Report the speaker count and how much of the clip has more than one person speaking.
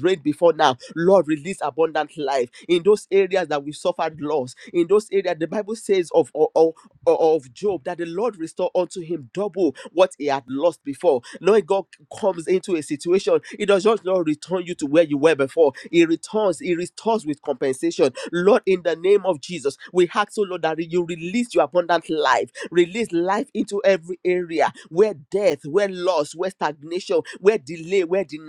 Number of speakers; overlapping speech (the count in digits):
1, no overlap